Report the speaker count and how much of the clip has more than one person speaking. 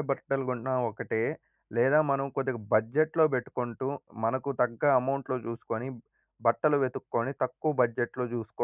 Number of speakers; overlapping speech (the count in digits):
1, no overlap